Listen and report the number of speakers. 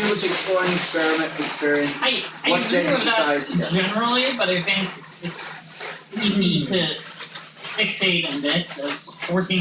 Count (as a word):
two